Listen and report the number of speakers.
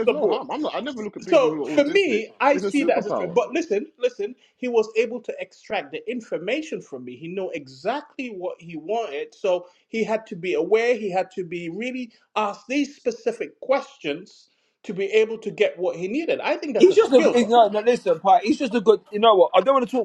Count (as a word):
three